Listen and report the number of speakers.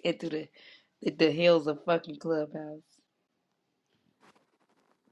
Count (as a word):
one